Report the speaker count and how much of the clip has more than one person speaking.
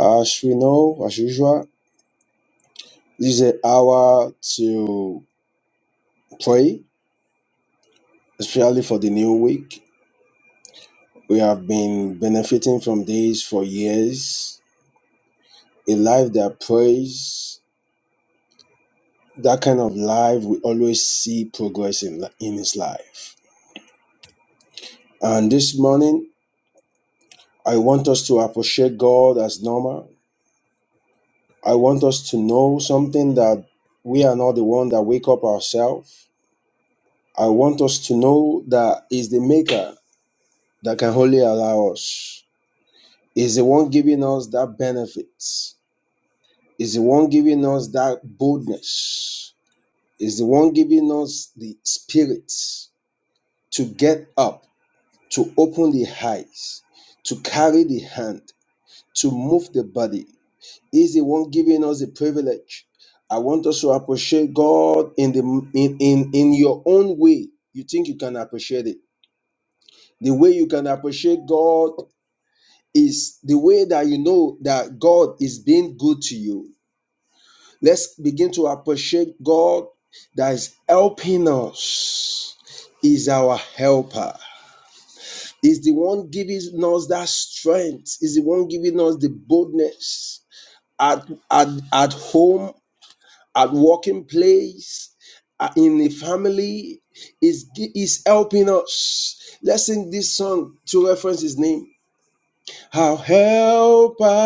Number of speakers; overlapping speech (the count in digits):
1, no overlap